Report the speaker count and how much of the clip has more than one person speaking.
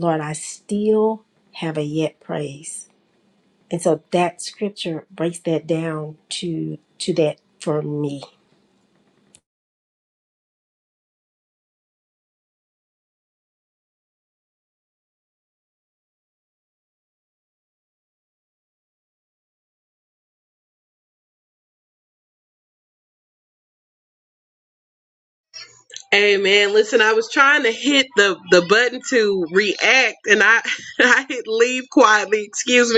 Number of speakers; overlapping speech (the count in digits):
2, no overlap